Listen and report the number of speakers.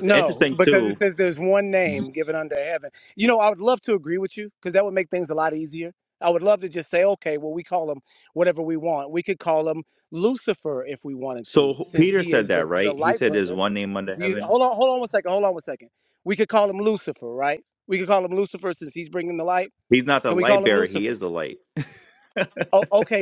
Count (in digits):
2